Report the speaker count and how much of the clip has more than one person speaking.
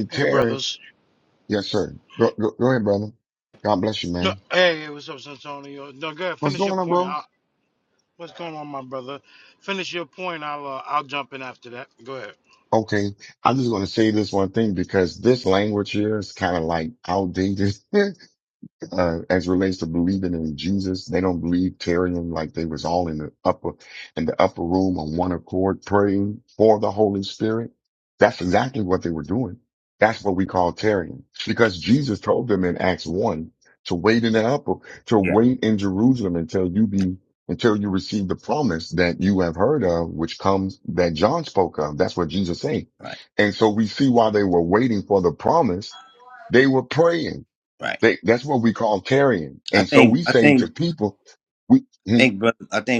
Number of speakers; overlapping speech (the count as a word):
three, about 5%